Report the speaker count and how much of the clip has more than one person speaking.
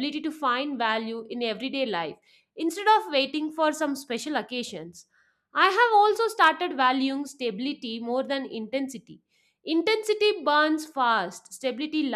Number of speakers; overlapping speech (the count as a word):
one, no overlap